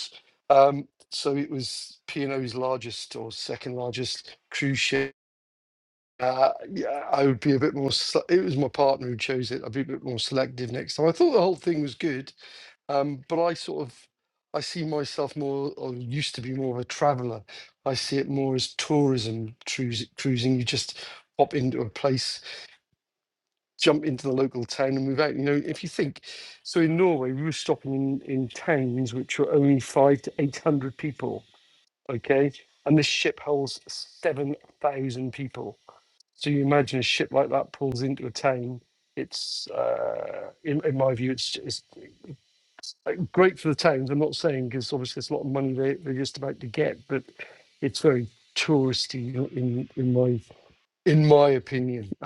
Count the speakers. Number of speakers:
one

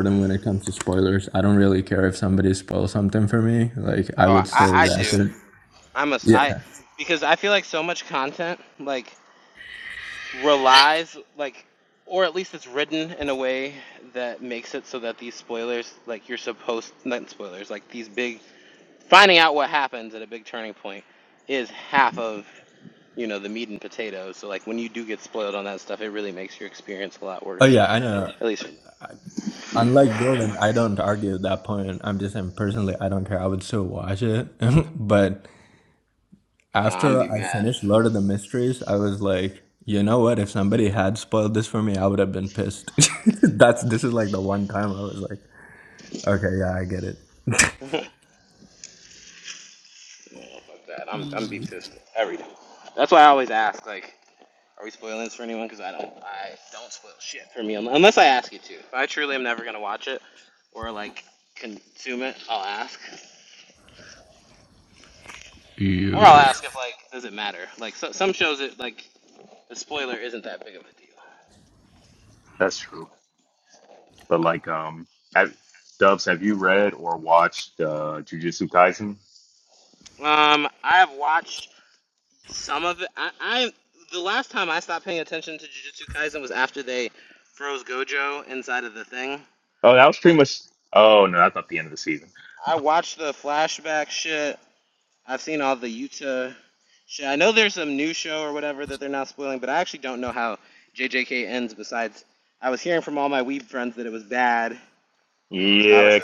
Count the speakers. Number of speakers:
three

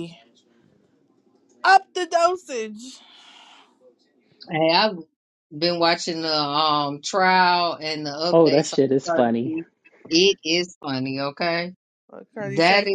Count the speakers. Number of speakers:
three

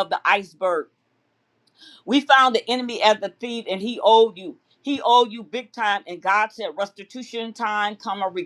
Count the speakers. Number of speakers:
one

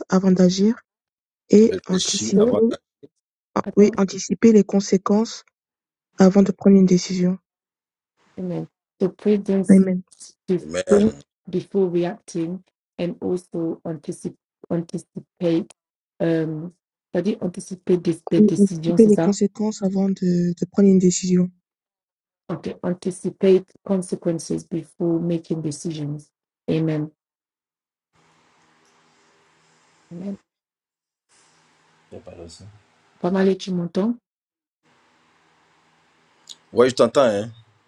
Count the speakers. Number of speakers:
three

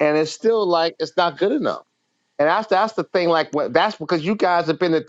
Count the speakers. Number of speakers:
one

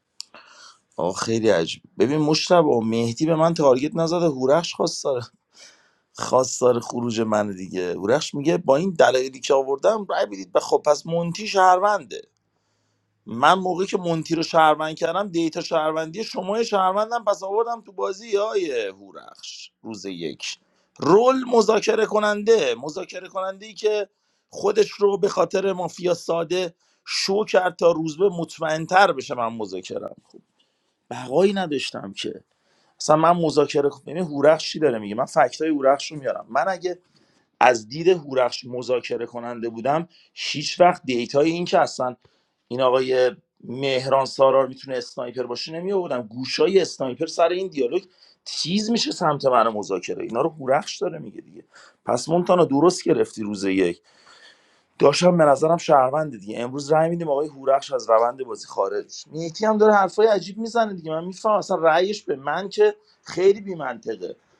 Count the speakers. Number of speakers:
one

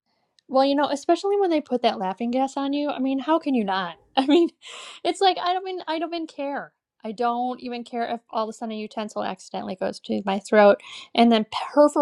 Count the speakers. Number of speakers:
one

